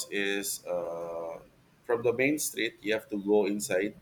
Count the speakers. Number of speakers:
1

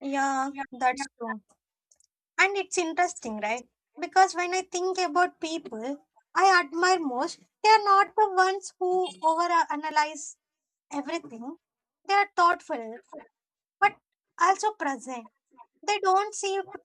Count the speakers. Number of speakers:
1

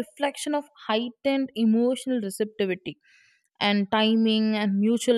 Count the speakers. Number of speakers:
1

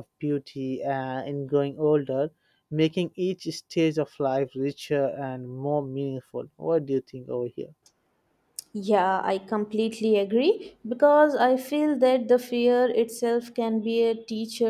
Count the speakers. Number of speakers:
2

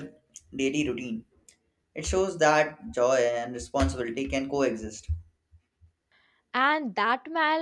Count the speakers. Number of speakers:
2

